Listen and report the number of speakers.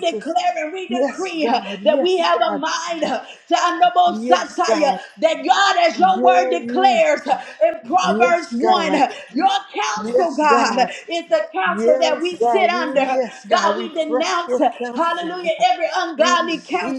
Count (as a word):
two